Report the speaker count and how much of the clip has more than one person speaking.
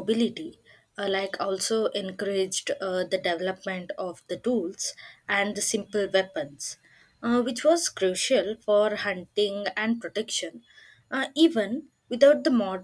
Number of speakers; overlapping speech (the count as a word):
one, no overlap